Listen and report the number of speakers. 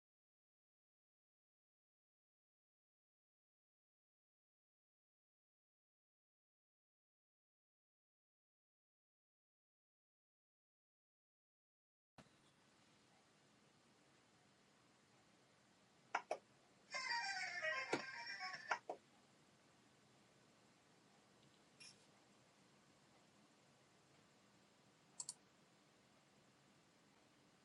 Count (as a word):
zero